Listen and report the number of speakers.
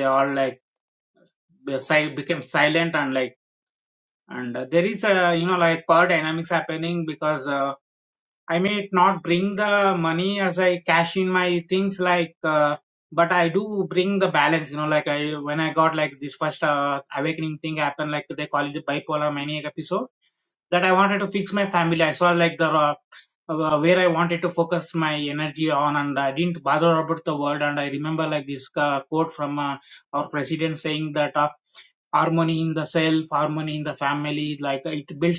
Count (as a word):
one